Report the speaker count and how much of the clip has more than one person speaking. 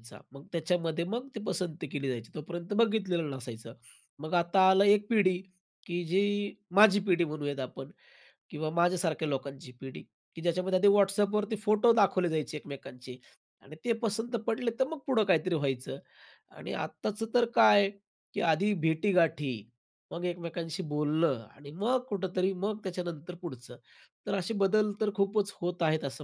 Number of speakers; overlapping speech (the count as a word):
one, no overlap